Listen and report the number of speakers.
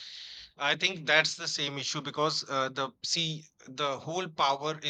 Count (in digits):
1